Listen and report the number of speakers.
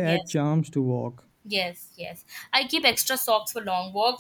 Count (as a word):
two